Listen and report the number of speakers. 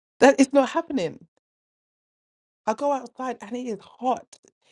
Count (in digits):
1